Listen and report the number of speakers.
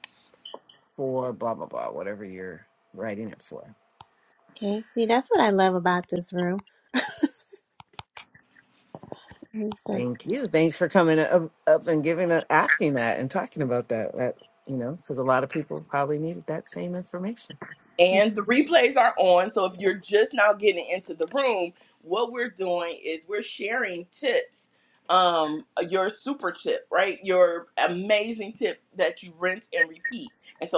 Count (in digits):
3